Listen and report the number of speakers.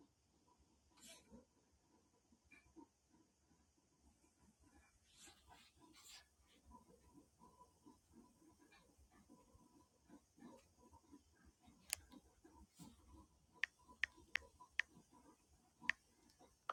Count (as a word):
zero